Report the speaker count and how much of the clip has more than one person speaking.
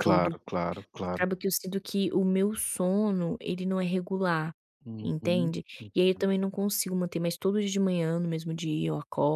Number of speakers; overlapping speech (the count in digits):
2, about 10%